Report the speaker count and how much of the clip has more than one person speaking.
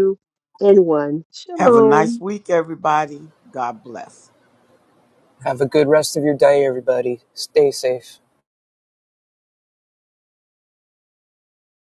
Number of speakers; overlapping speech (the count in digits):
3, about 5%